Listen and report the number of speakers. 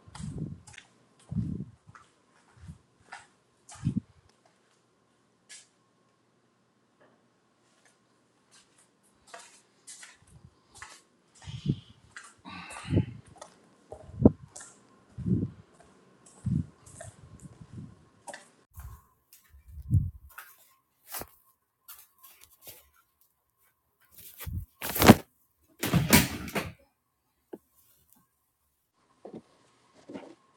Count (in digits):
0